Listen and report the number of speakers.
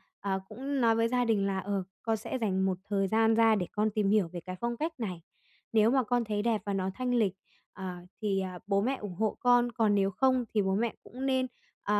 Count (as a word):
one